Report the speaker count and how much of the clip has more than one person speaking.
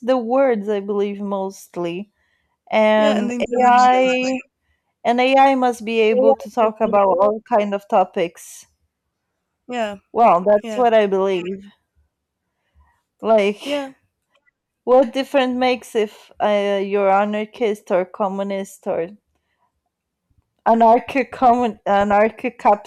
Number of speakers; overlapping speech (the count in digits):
2, about 7%